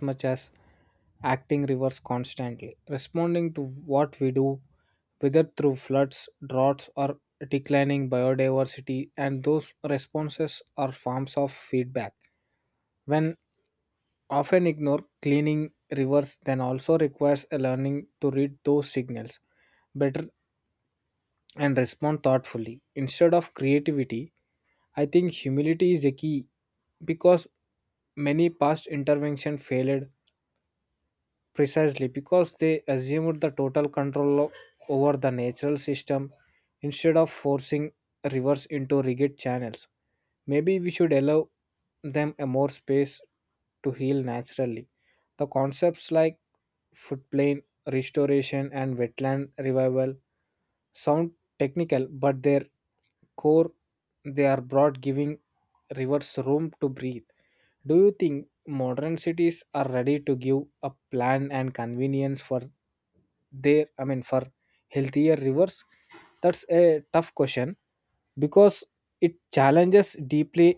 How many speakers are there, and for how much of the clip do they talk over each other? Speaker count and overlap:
1, no overlap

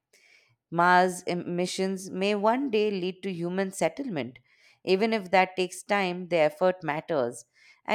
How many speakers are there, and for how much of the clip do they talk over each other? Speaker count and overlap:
1, no overlap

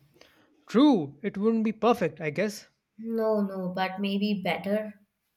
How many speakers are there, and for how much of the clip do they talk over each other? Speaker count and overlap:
2, no overlap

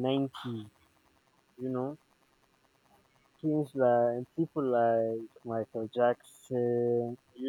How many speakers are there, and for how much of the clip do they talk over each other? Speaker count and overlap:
1, no overlap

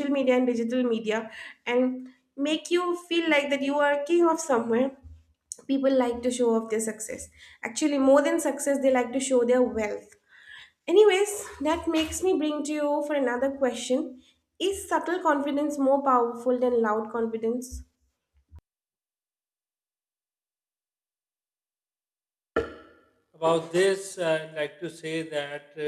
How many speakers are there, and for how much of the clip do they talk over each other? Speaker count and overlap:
2, no overlap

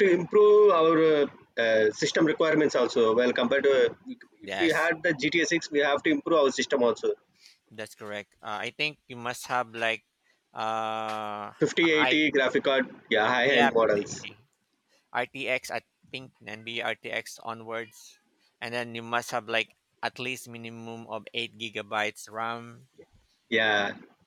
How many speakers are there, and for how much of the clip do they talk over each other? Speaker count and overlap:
2, about 7%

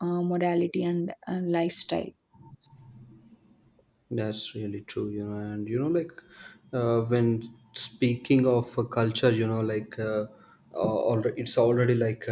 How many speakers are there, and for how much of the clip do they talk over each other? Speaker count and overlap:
2, no overlap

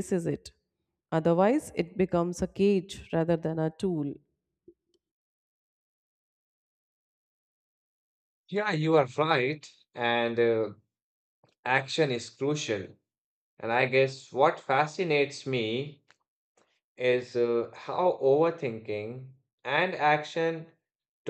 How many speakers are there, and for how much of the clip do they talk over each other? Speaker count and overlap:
2, no overlap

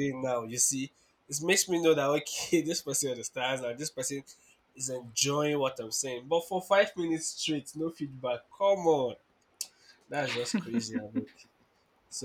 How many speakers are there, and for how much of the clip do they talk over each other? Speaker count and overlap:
1, no overlap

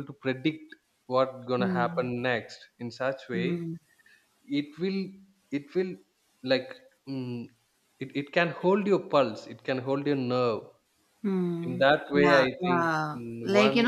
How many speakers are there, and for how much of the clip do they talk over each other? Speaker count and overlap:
2, about 18%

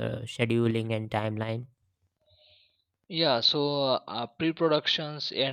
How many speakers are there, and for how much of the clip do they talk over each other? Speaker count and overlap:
2, no overlap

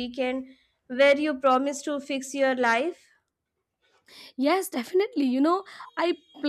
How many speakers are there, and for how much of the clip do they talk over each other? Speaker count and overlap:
2, no overlap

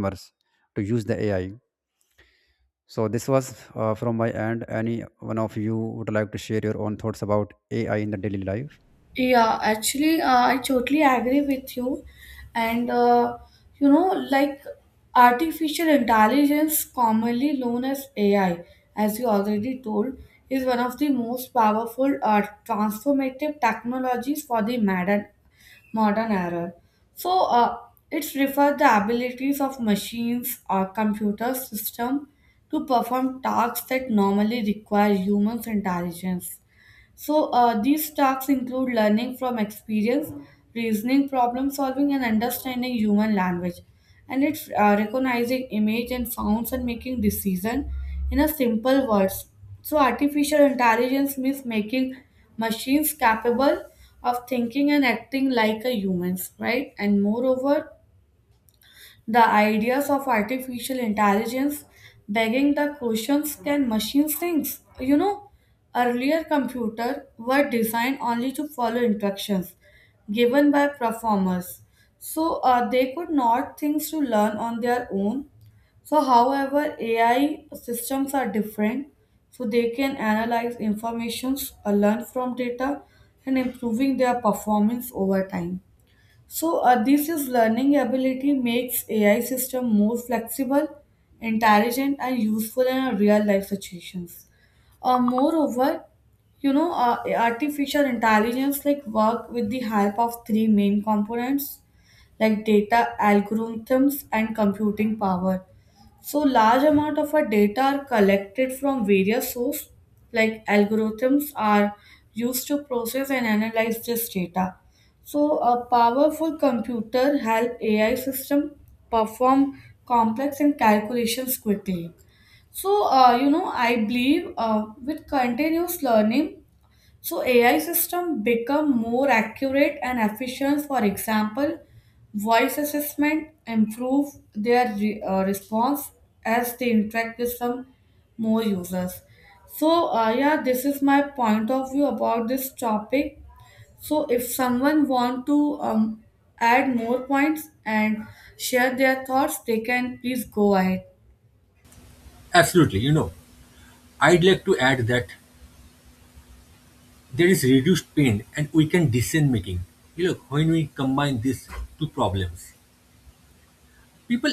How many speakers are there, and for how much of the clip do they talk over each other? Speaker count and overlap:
3, no overlap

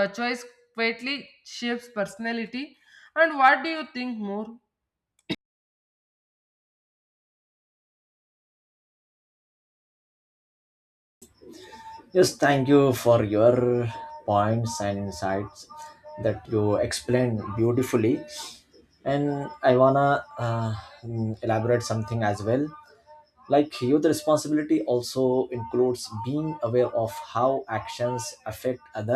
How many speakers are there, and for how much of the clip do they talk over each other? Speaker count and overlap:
2, no overlap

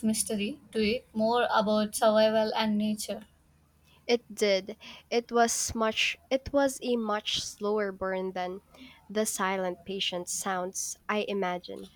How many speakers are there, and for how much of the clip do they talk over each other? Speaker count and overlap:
2, no overlap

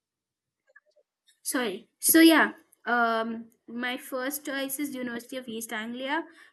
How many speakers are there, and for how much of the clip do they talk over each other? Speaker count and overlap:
1, no overlap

